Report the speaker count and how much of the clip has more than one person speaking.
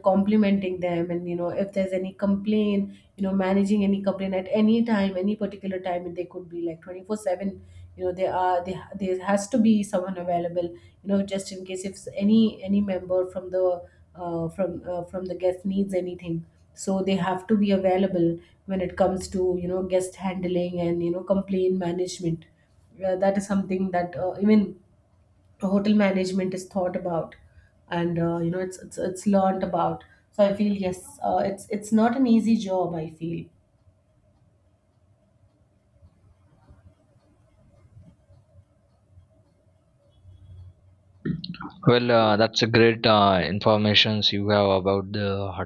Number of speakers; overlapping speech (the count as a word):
two, no overlap